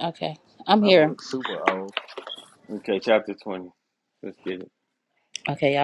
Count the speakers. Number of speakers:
3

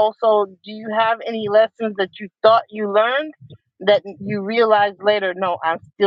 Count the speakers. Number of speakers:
1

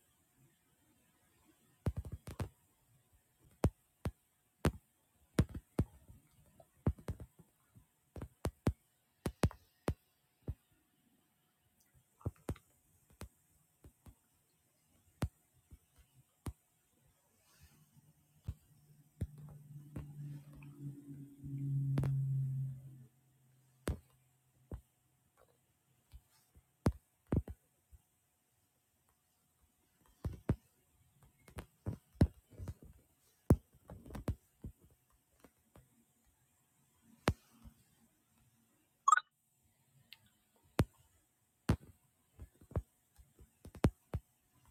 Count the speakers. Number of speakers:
0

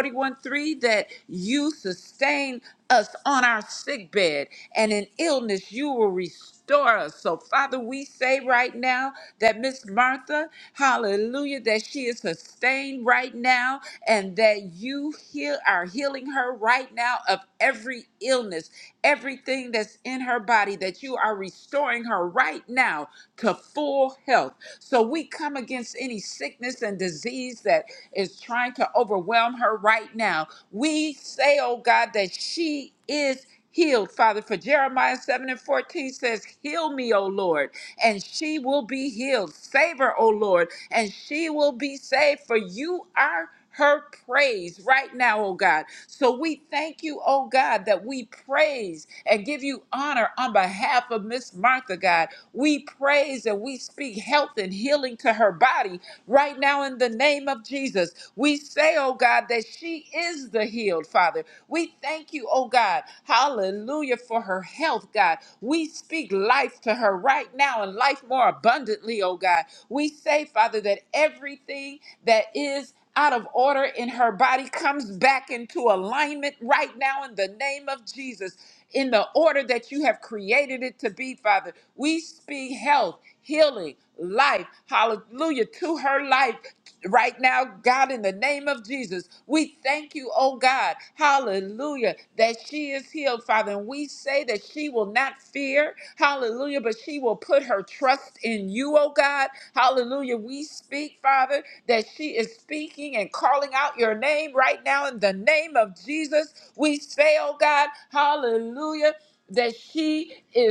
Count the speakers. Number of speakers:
1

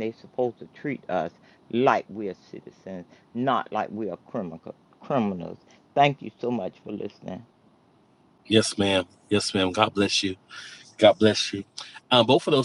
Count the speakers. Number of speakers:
2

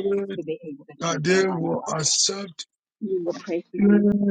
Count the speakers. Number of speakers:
2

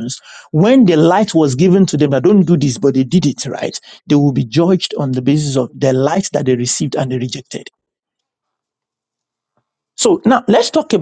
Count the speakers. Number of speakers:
1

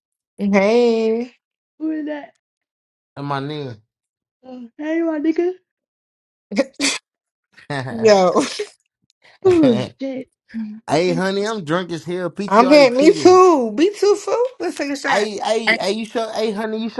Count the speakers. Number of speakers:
3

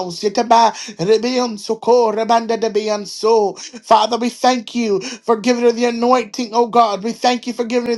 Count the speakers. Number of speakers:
1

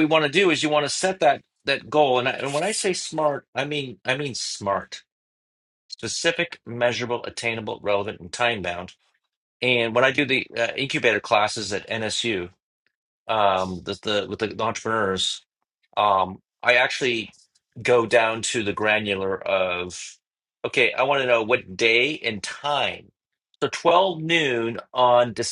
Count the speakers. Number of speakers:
1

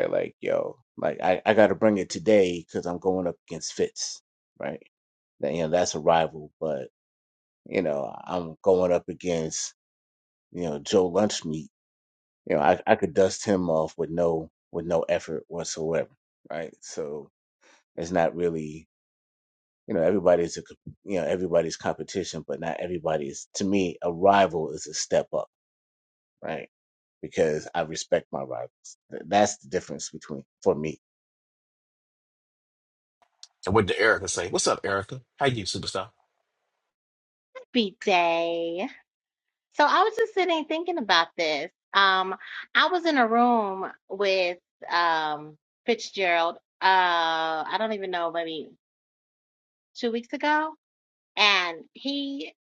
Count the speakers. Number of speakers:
3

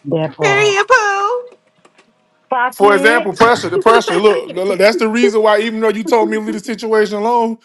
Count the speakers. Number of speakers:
3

